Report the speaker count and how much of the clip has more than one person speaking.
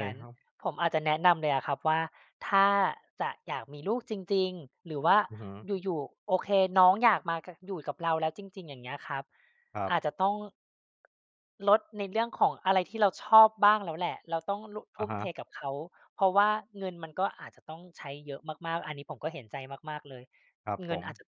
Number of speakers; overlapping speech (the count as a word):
two, about 4%